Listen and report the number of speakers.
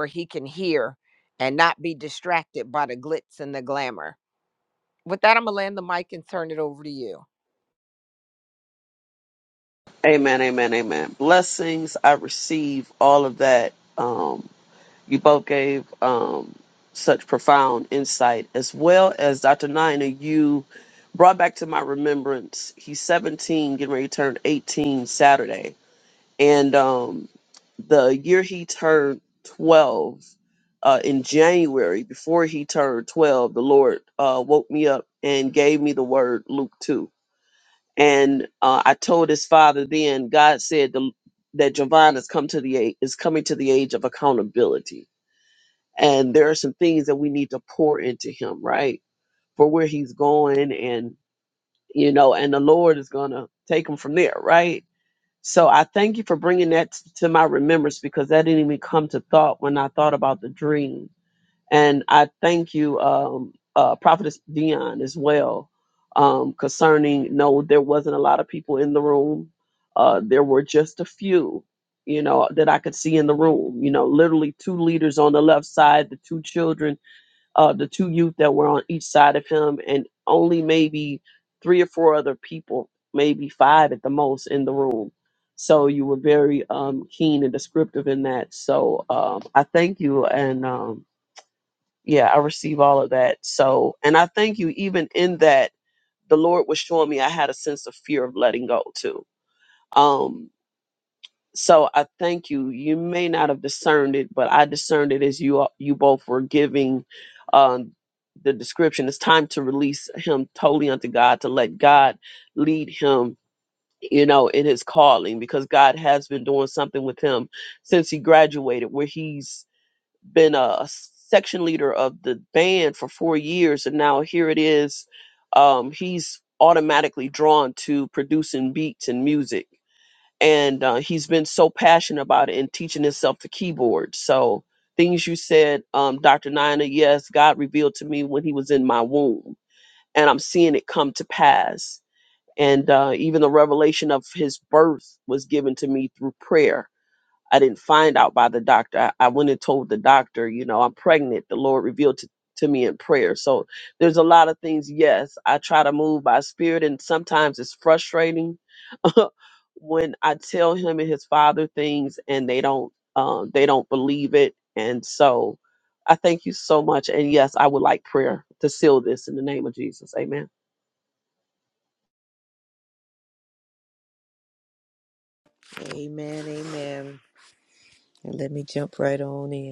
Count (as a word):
three